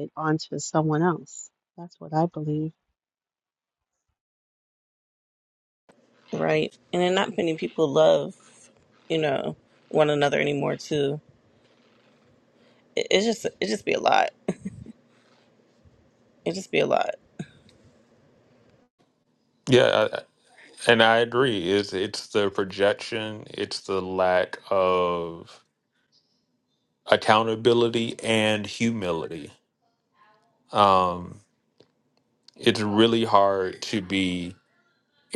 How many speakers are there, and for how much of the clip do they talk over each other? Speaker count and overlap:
3, no overlap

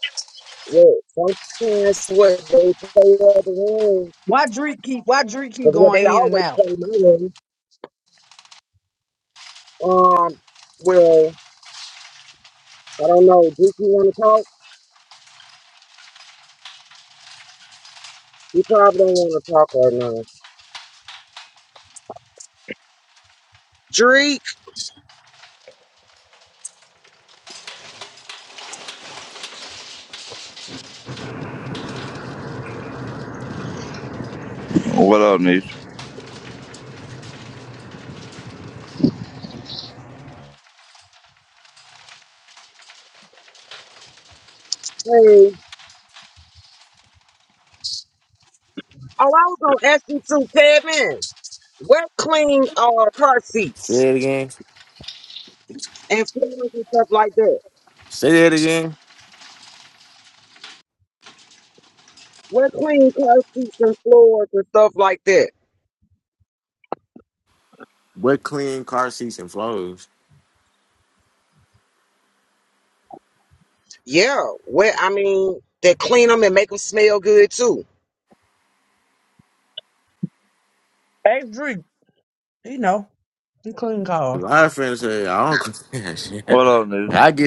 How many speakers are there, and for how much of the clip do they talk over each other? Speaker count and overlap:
4, about 1%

